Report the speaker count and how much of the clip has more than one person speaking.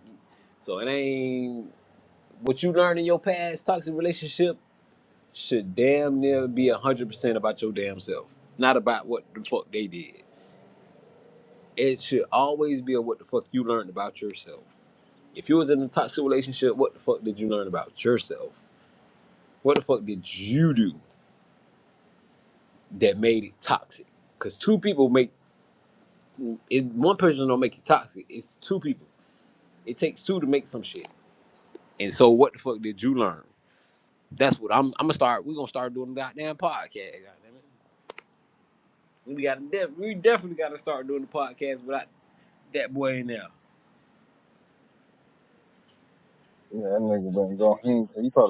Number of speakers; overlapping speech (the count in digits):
2, no overlap